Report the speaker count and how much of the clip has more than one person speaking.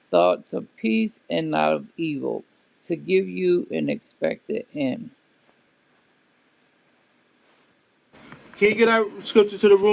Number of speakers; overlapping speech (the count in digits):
2, no overlap